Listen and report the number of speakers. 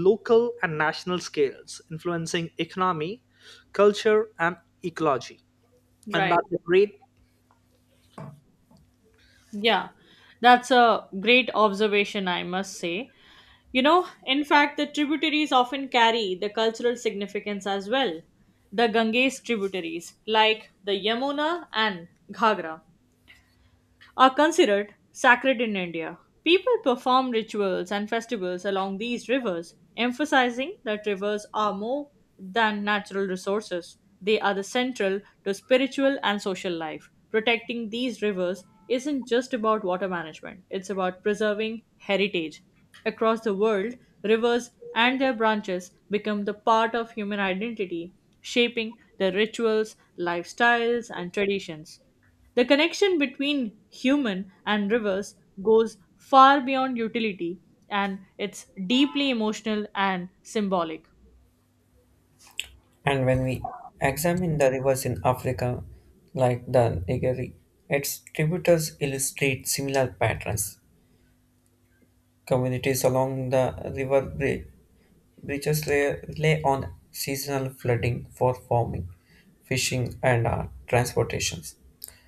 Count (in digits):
3